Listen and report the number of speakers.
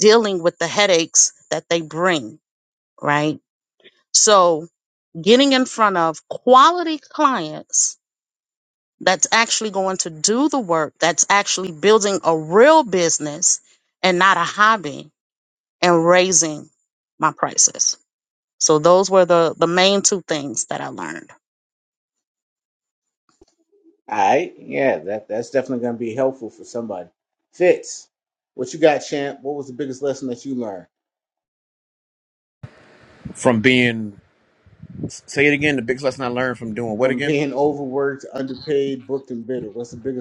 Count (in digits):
3